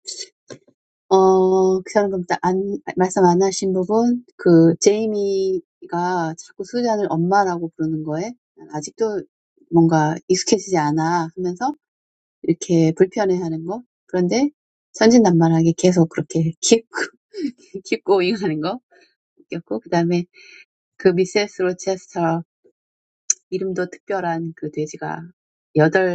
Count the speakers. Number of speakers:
1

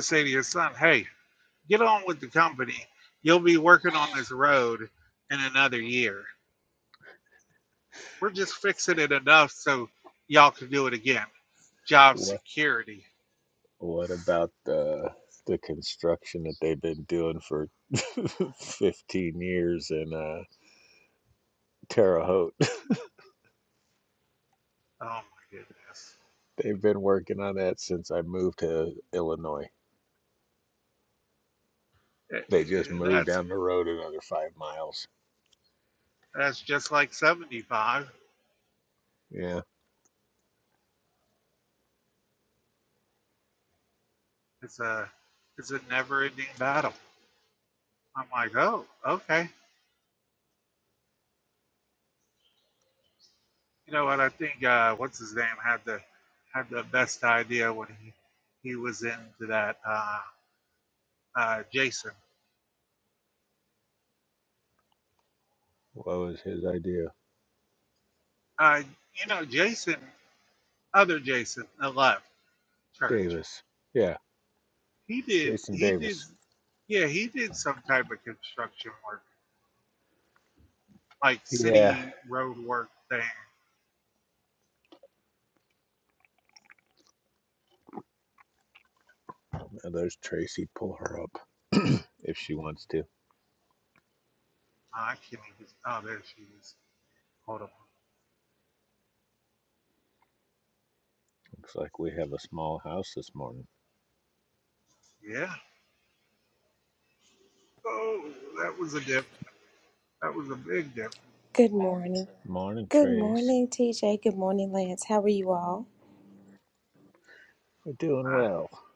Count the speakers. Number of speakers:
3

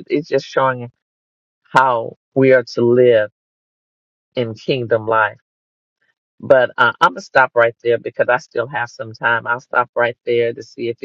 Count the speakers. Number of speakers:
1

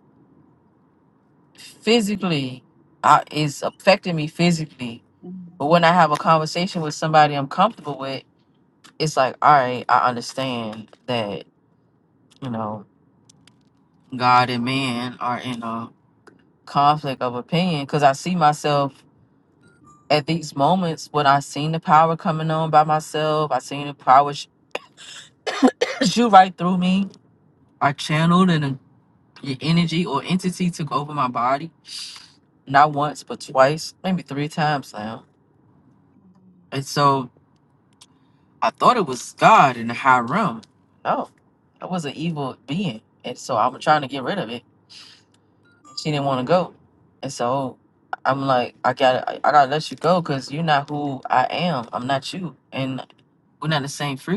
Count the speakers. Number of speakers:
1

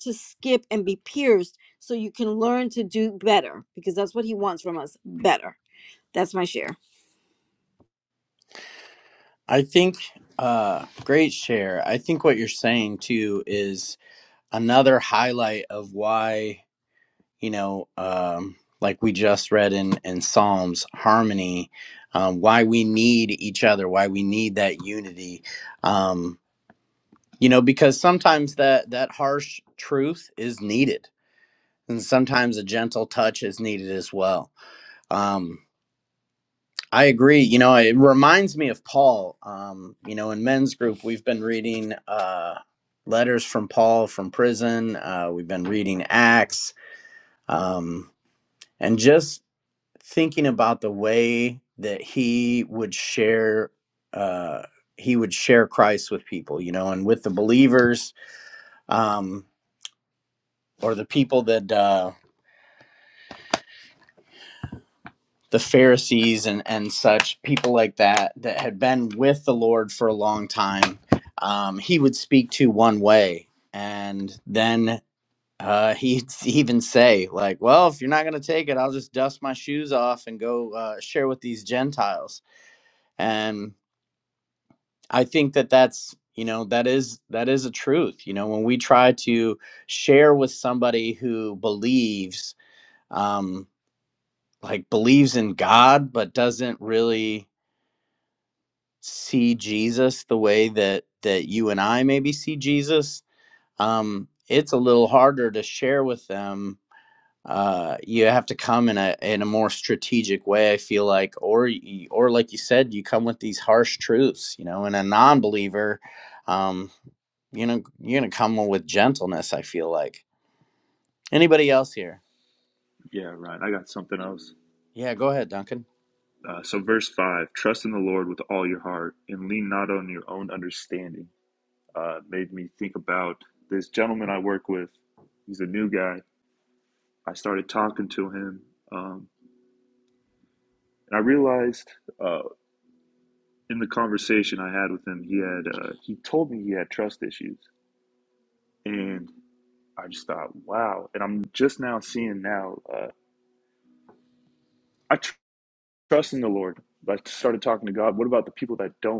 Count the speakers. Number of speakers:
3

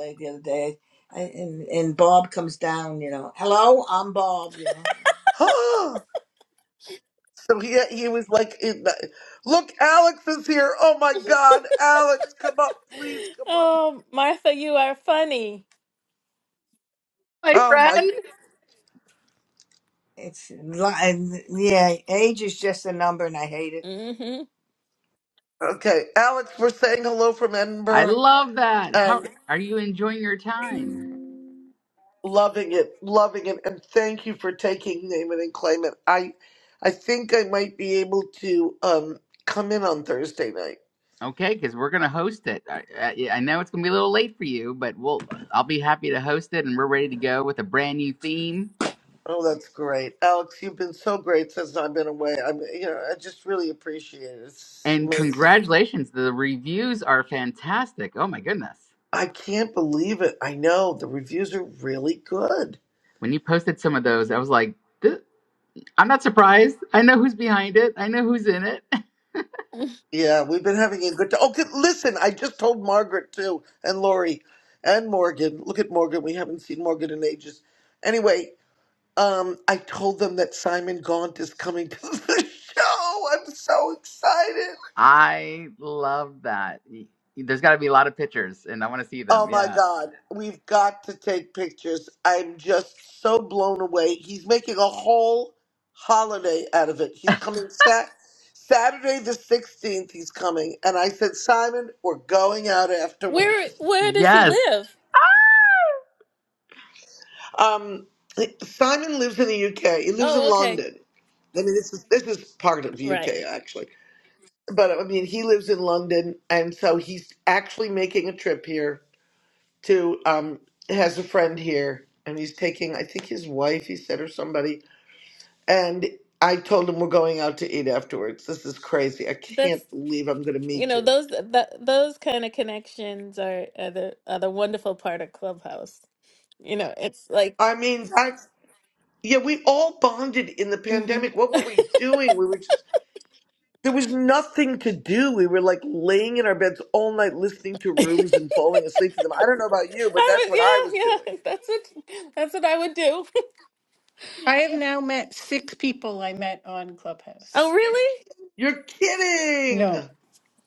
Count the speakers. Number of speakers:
5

